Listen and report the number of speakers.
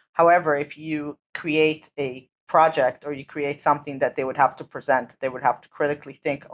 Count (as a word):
one